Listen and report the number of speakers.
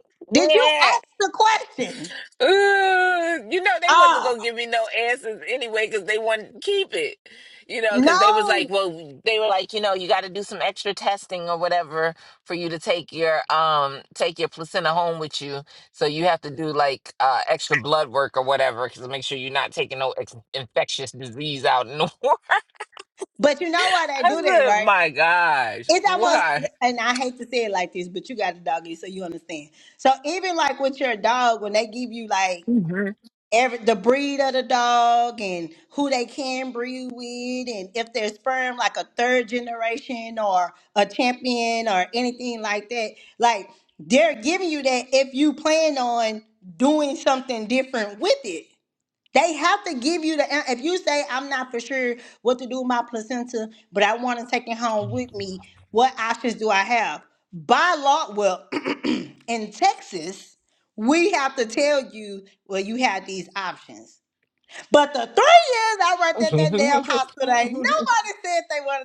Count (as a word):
two